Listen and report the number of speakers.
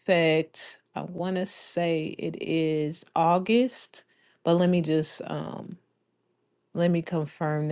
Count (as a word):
one